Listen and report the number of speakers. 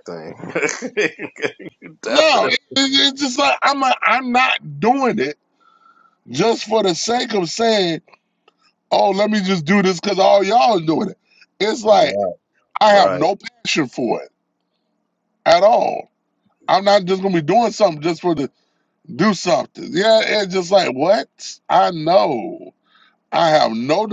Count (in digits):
2